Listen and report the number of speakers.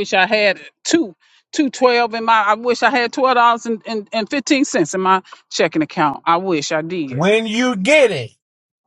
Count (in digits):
2